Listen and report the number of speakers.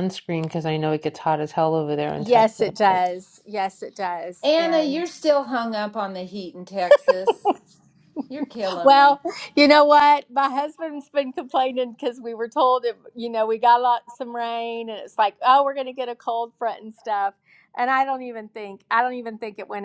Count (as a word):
three